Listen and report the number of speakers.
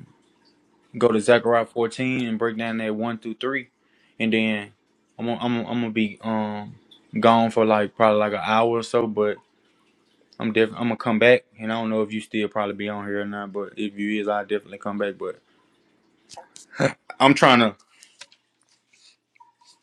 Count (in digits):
1